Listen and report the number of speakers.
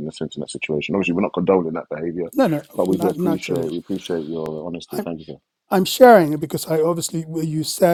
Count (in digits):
2